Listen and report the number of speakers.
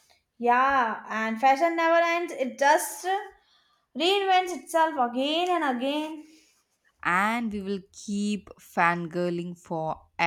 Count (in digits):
2